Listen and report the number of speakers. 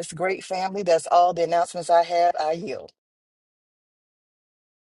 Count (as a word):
one